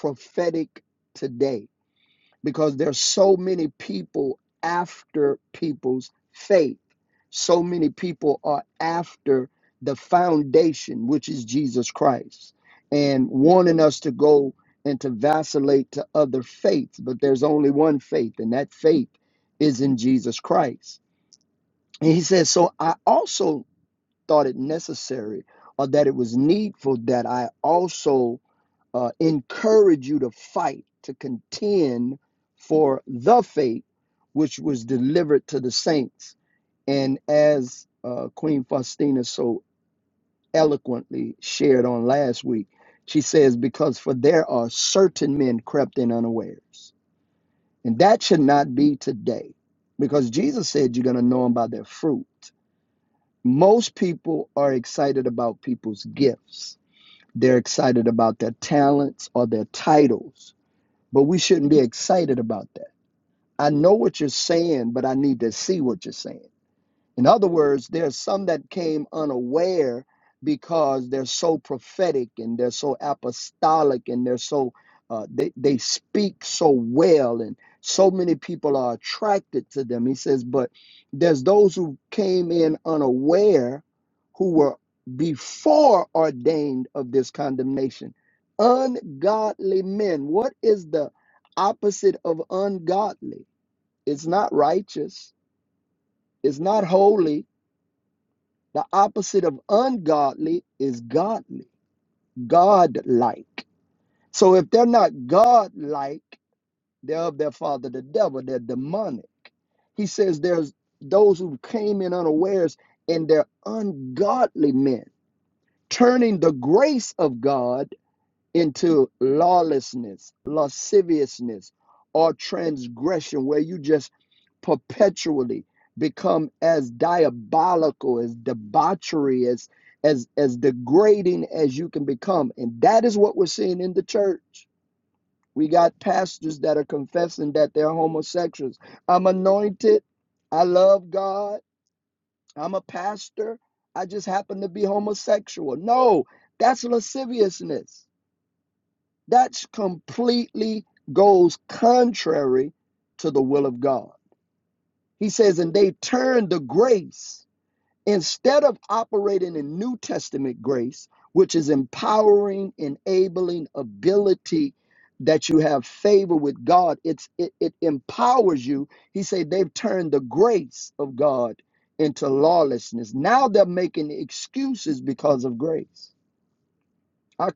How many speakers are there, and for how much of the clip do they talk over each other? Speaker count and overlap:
one, no overlap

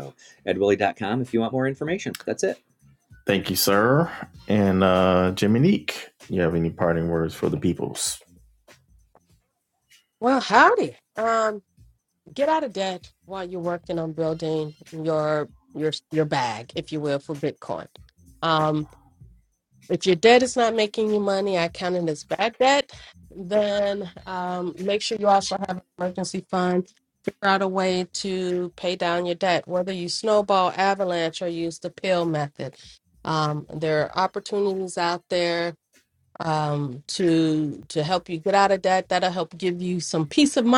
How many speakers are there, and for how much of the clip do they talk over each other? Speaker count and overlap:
three, no overlap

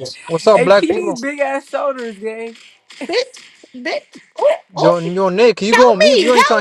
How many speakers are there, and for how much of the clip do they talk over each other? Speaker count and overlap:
three, about 30%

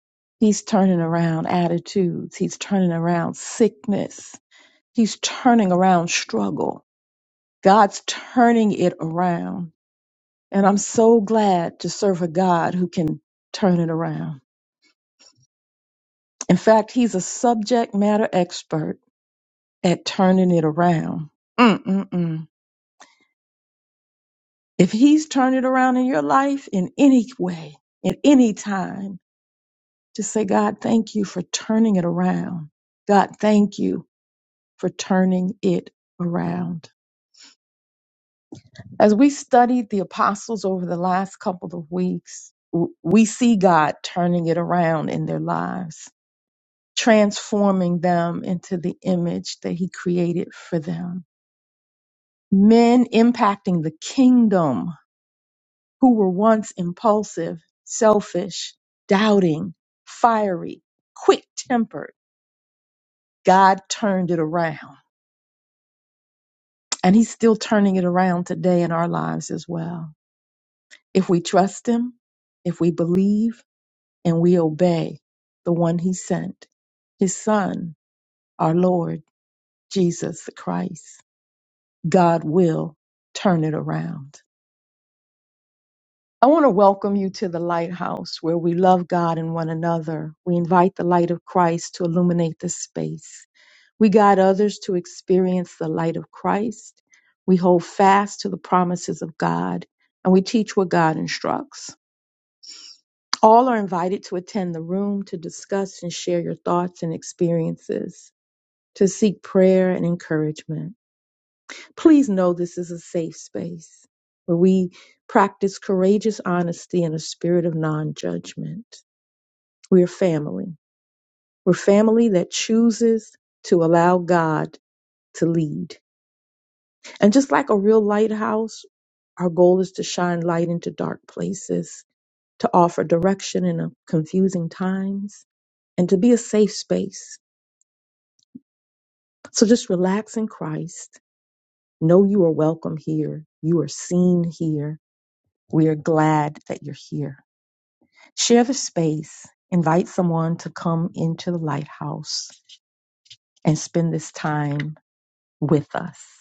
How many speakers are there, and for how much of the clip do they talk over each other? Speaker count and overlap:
one, no overlap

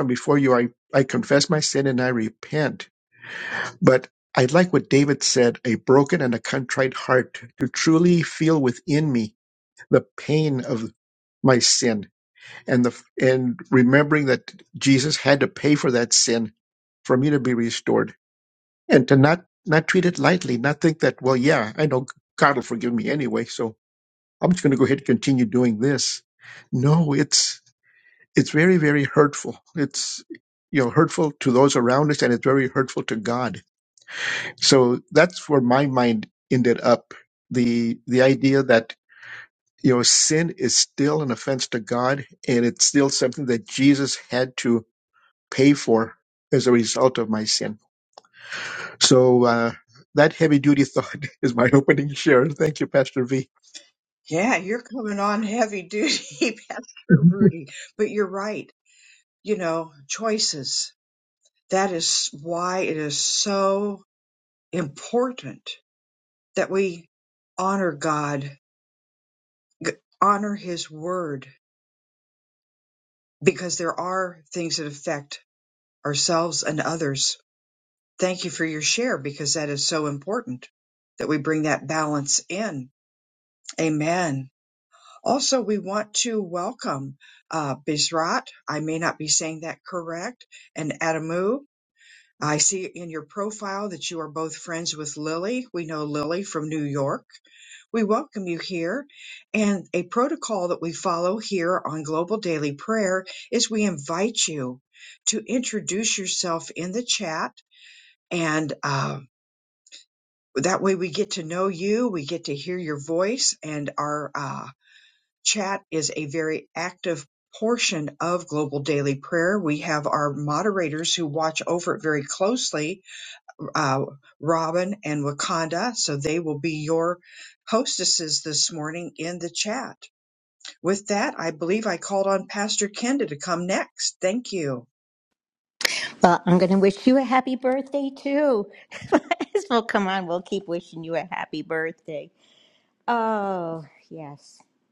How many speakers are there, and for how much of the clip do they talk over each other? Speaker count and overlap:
three, under 1%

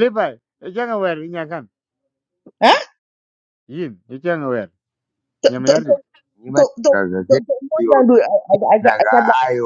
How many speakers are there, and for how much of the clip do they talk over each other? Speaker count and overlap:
three, about 19%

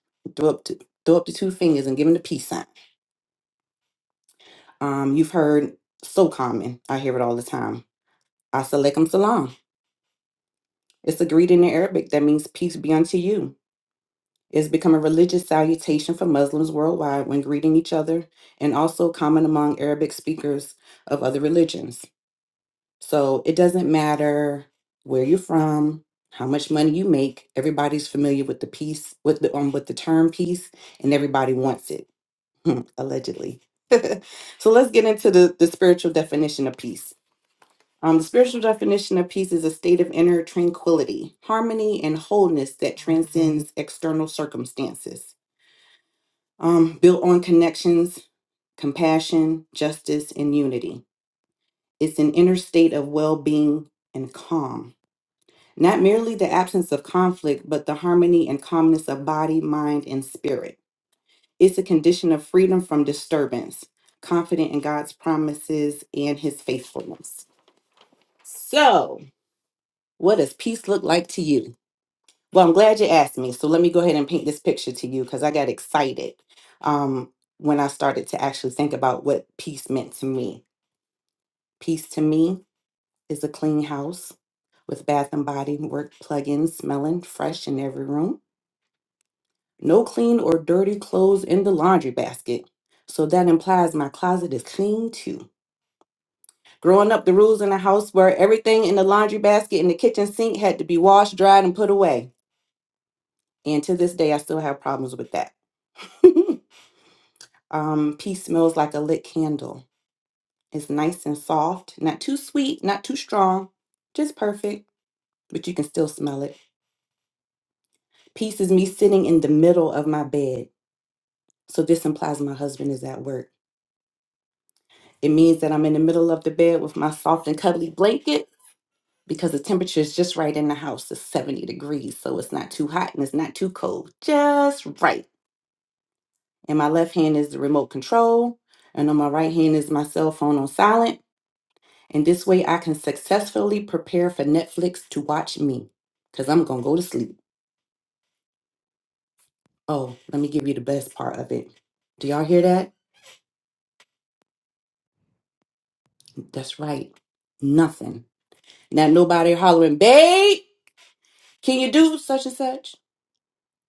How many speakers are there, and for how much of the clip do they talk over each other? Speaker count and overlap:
one, no overlap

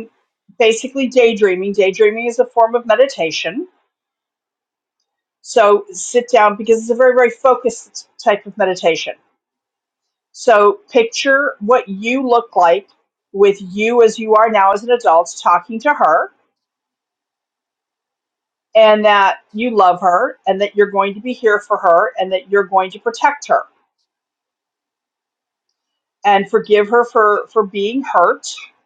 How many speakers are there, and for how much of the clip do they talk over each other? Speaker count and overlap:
one, no overlap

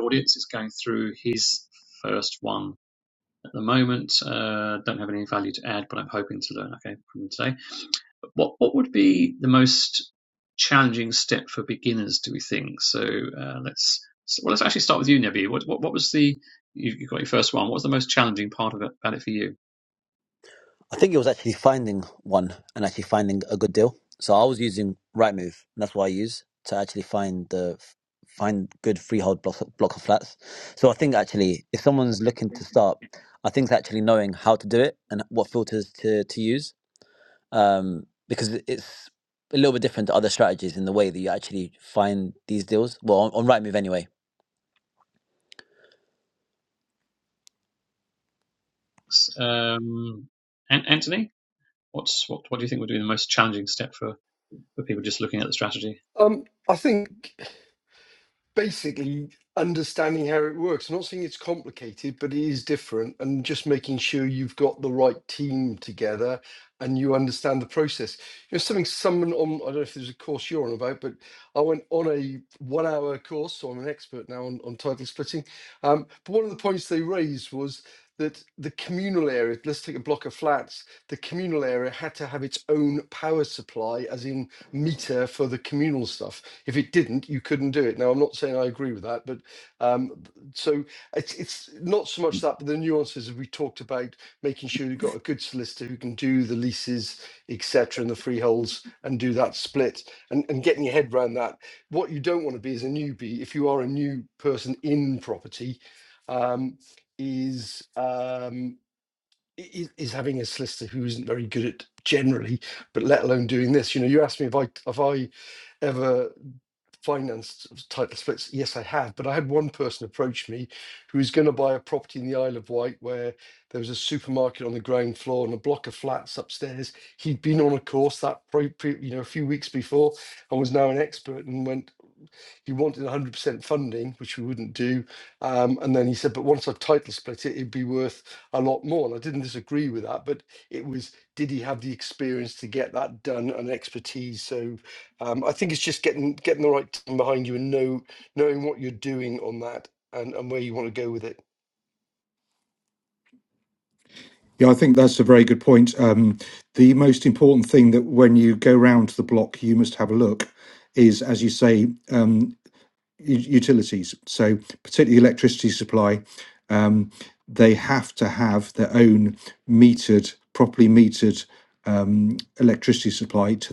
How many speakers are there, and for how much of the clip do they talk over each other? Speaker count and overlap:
four, no overlap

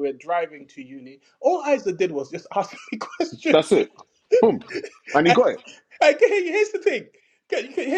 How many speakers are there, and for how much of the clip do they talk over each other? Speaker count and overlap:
two, about 1%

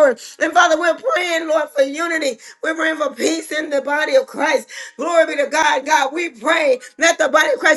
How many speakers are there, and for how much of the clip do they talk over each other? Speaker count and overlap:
one, no overlap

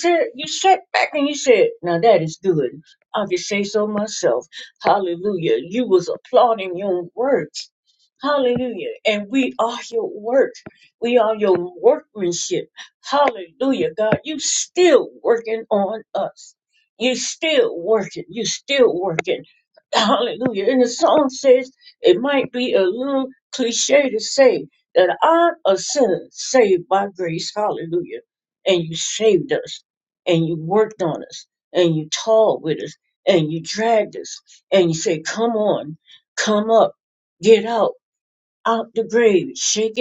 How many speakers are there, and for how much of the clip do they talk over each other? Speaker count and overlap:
one, no overlap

